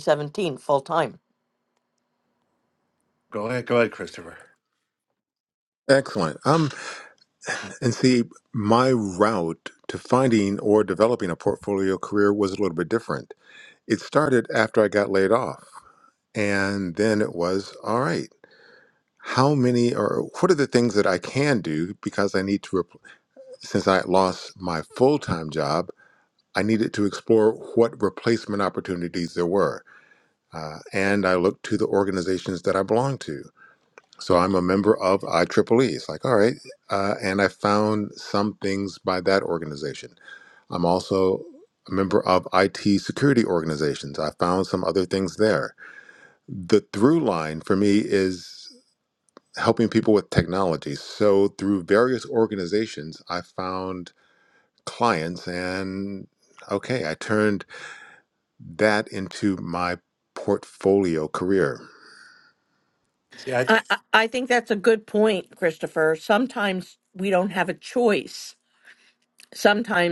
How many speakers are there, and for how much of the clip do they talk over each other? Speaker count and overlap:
3, under 1%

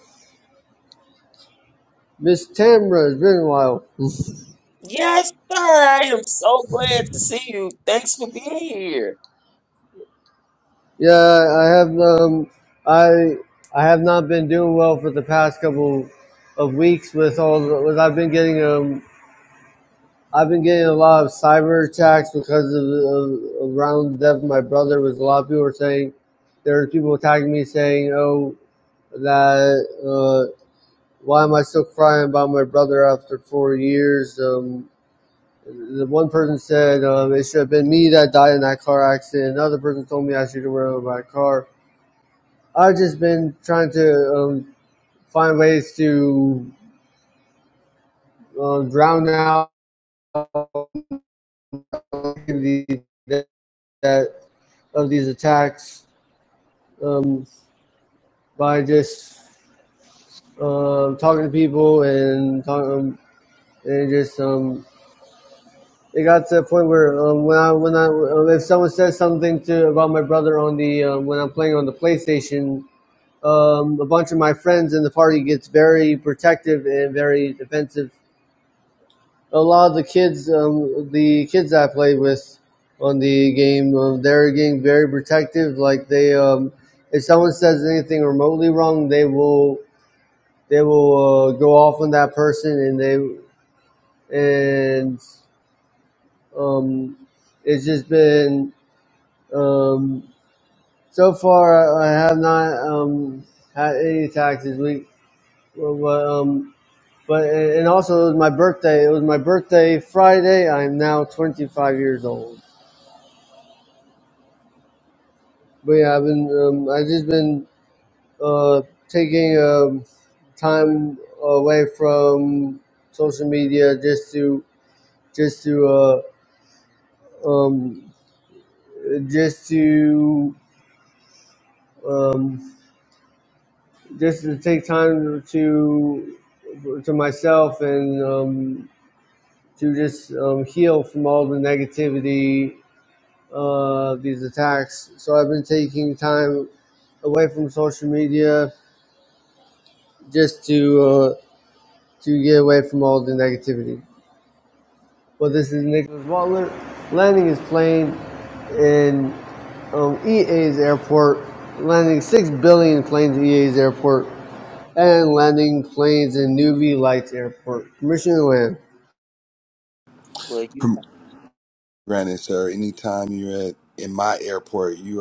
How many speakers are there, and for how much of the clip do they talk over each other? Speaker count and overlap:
3, no overlap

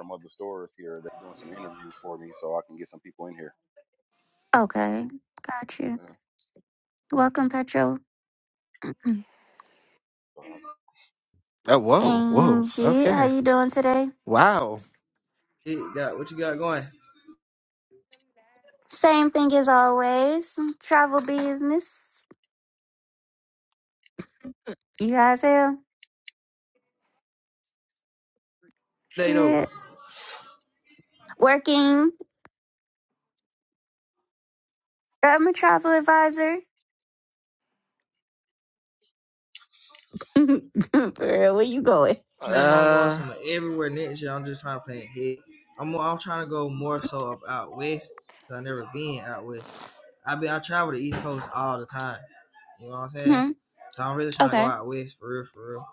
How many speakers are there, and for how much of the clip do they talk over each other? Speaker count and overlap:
4, about 6%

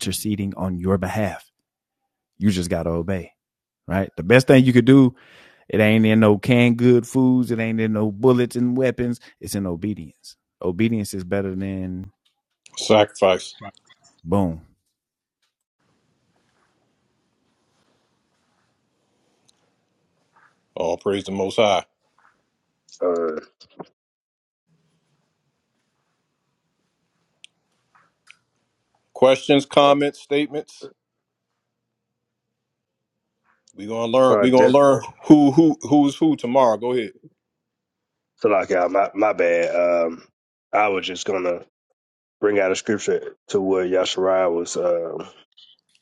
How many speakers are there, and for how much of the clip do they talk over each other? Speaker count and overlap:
3, no overlap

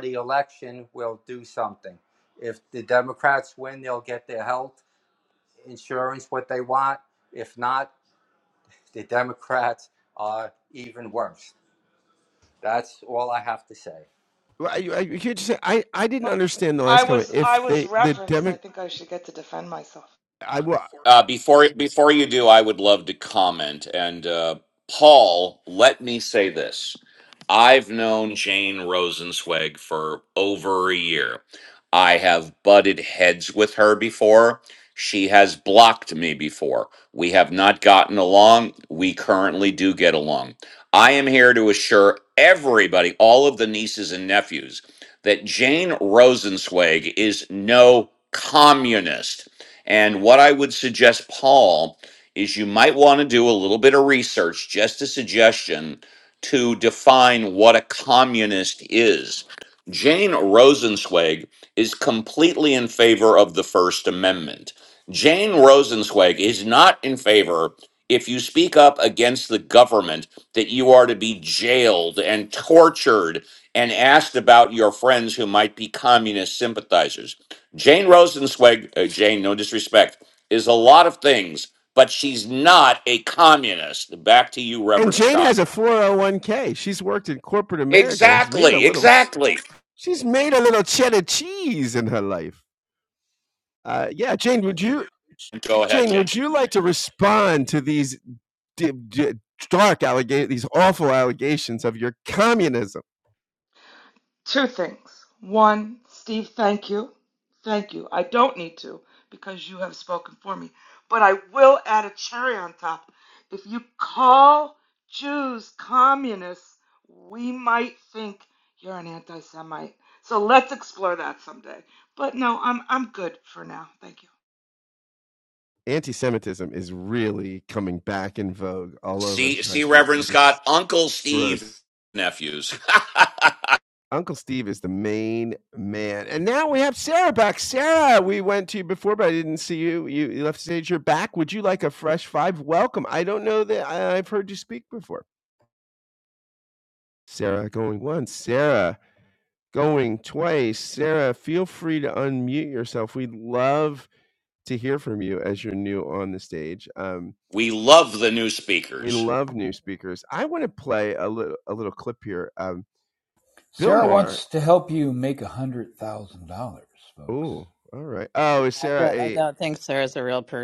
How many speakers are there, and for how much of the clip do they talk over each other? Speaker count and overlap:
6, about 4%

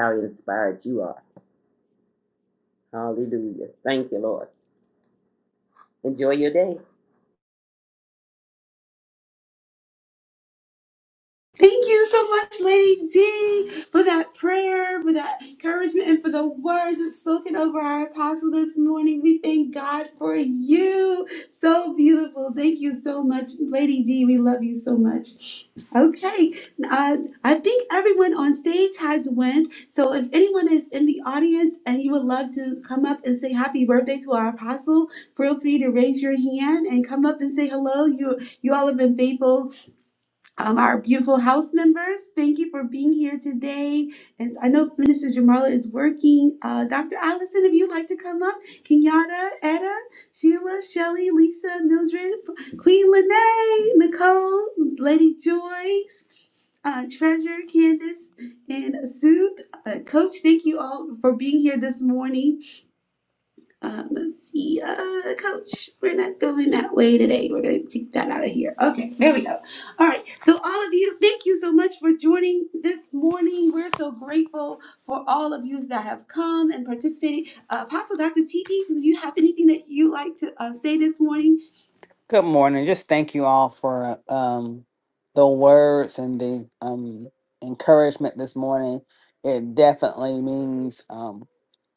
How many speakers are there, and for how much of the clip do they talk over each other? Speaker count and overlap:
3, no overlap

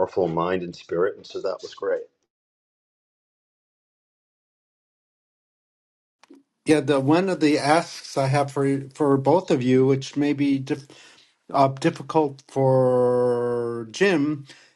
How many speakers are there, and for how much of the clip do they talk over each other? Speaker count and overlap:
2, no overlap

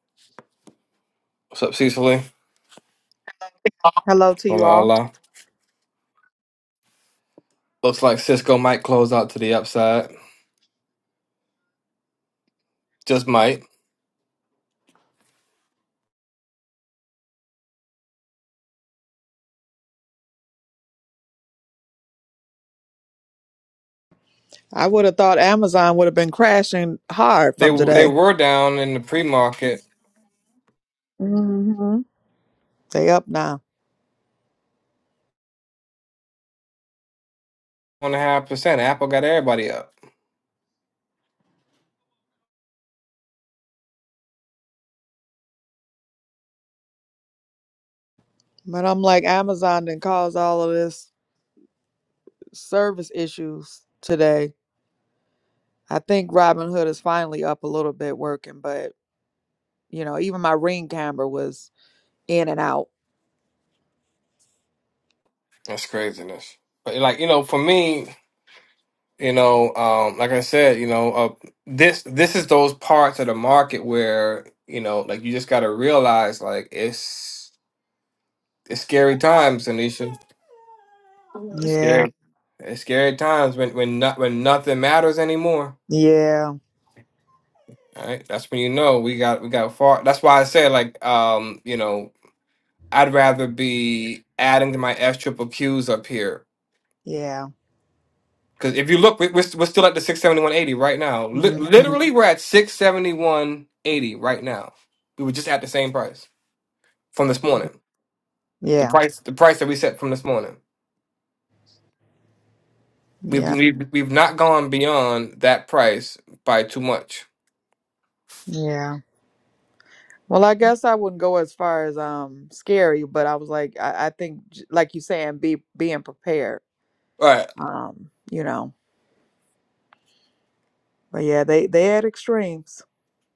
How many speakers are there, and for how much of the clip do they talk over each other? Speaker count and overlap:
2, about 1%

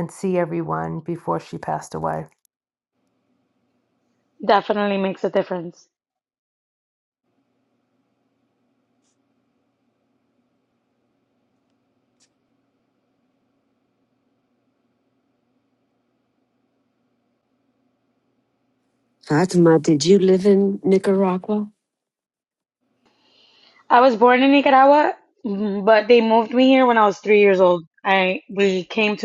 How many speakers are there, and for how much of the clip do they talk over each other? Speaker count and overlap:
3, no overlap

